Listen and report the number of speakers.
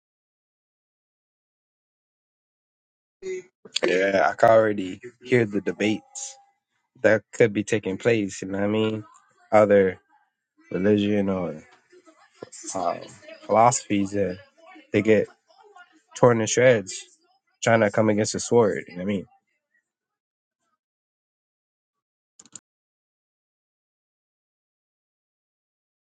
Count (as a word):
one